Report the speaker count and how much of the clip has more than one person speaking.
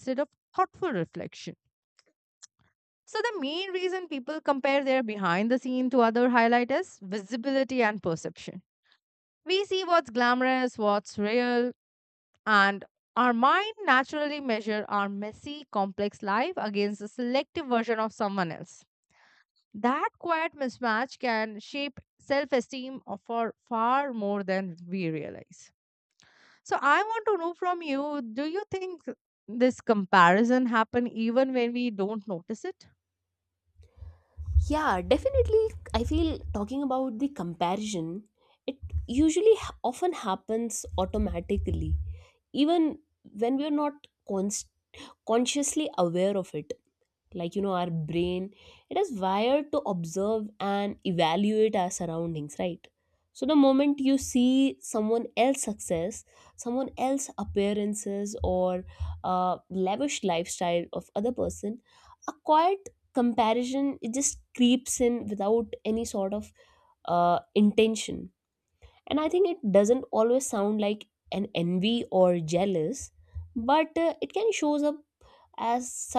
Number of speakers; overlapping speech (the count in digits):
2, no overlap